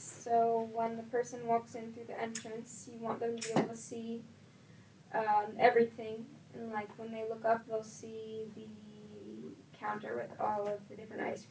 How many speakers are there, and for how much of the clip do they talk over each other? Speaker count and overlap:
one, no overlap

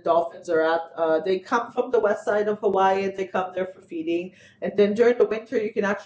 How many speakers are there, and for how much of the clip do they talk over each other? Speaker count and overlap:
one, no overlap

